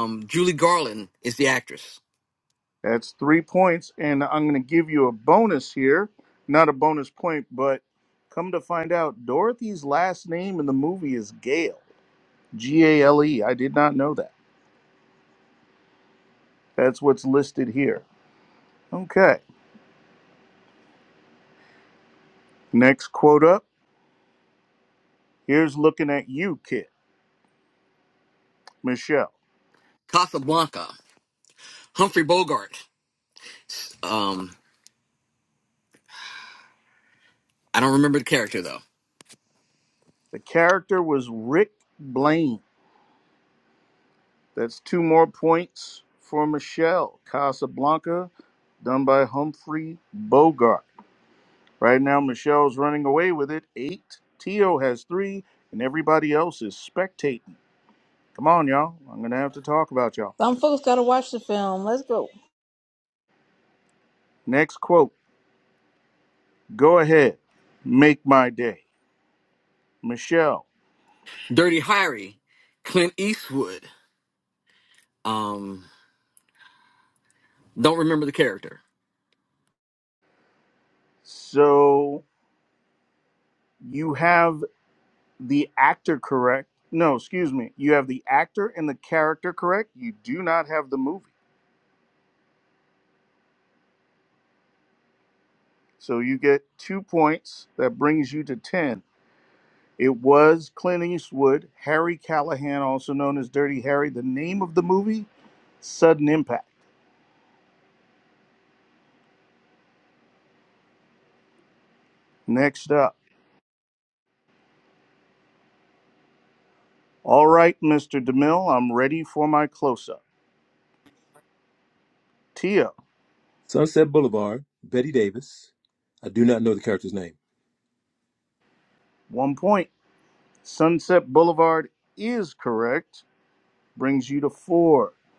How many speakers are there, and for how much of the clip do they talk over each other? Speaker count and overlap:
4, no overlap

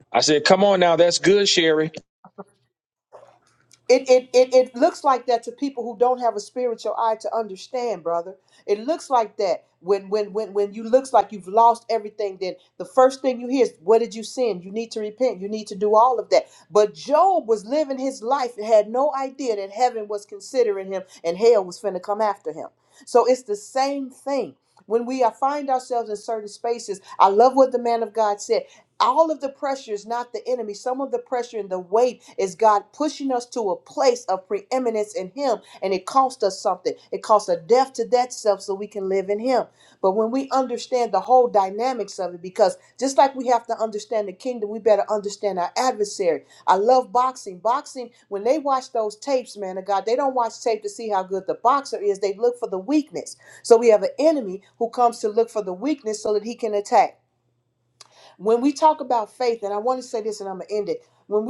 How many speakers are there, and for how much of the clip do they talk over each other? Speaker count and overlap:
2, no overlap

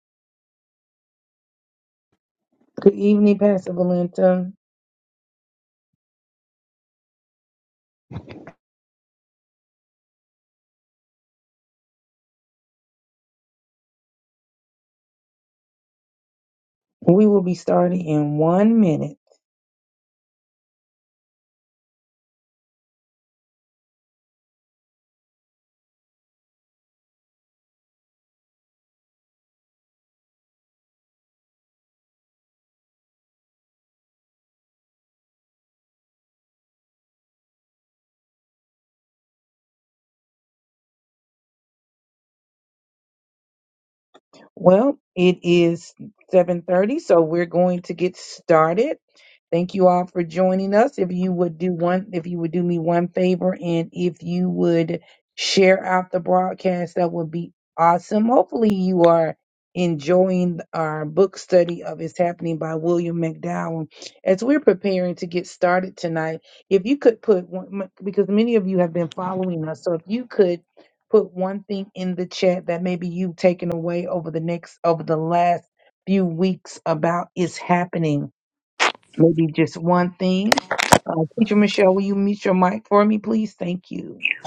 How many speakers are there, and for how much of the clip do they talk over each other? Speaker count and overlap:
1, no overlap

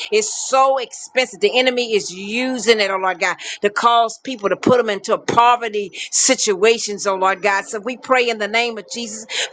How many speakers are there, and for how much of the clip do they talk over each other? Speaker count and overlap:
1, no overlap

